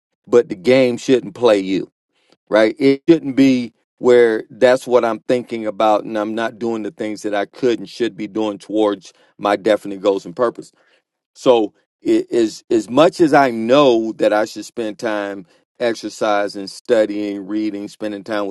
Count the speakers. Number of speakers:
1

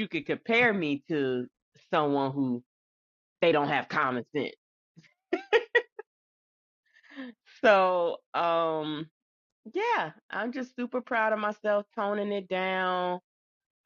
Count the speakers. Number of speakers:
1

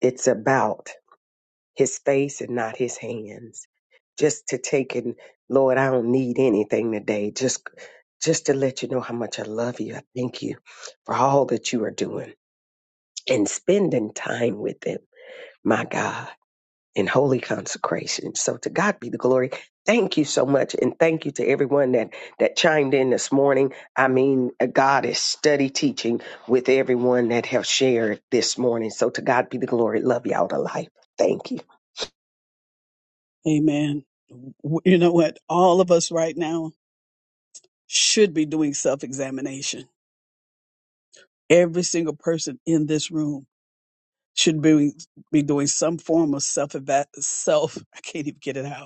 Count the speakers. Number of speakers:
2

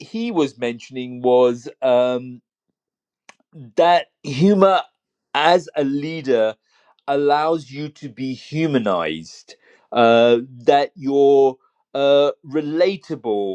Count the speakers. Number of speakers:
1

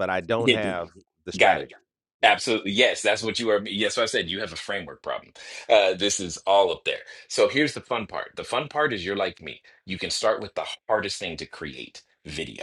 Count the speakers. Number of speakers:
2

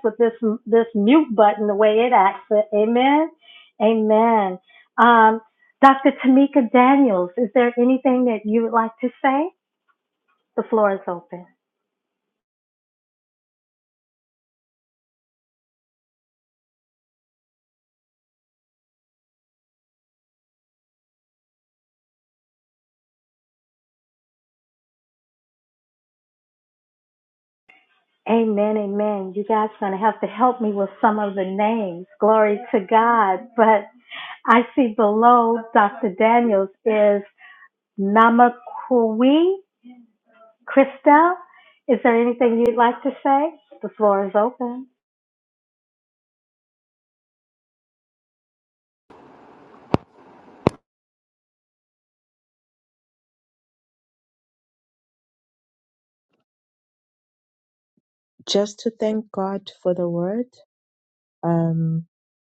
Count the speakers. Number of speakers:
2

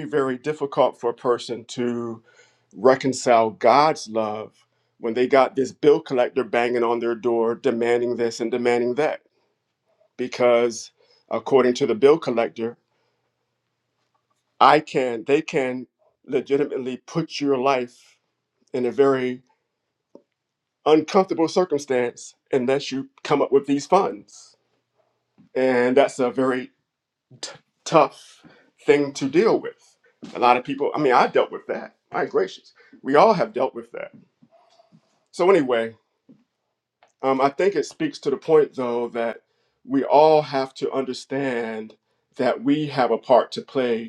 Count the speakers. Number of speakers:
1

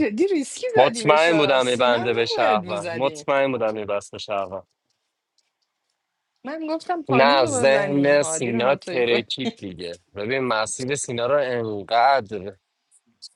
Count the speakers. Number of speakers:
2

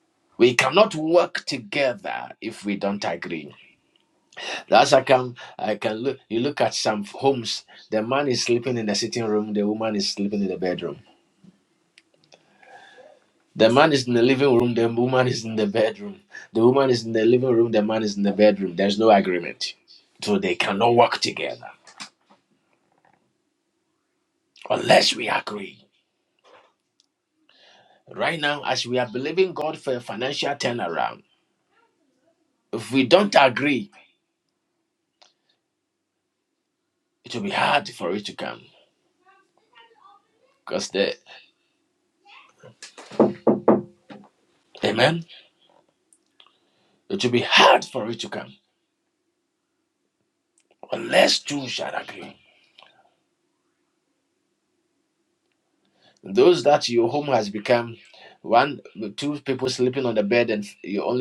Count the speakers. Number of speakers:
1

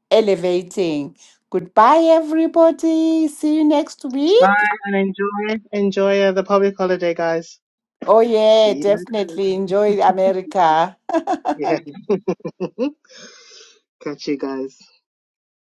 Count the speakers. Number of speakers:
2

